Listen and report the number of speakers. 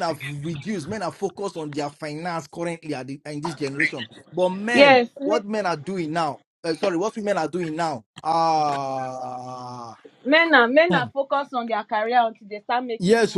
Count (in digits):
2